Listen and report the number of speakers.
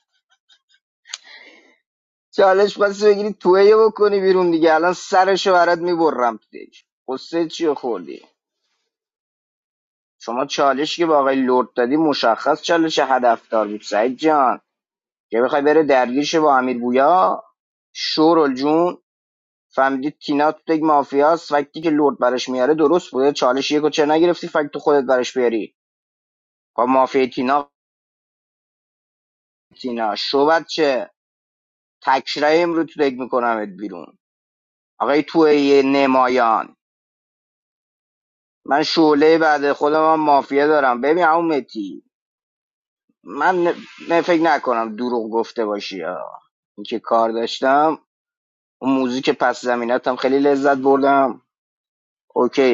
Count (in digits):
1